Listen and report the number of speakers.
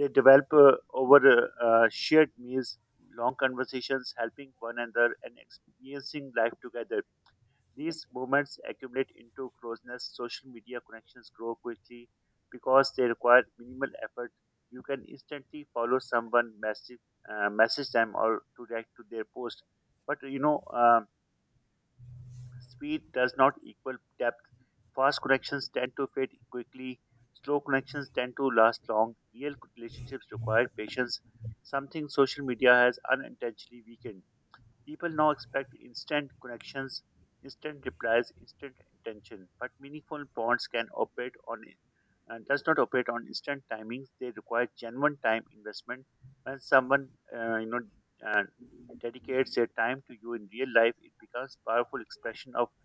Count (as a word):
one